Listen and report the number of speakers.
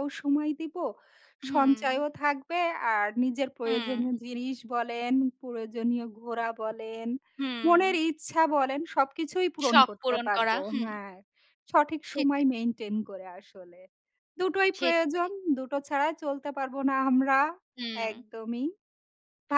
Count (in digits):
2